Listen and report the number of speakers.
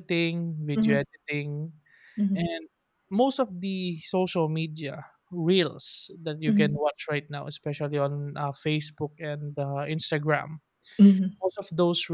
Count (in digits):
2